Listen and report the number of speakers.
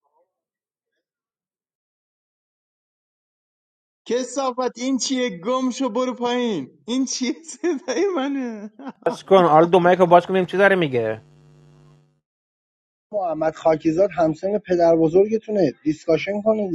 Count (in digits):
3